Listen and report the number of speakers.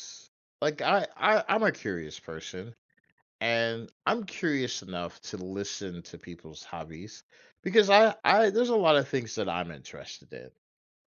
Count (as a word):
one